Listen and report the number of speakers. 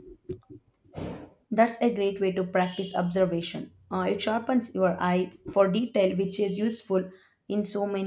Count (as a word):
one